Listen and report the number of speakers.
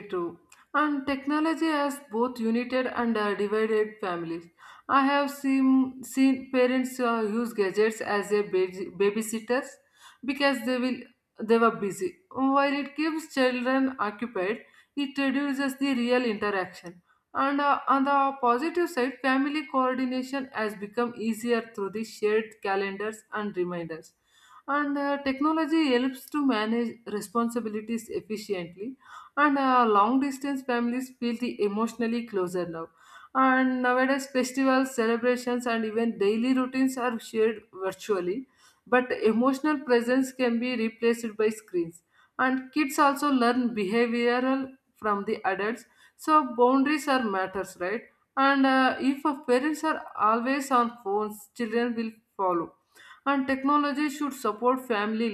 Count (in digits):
1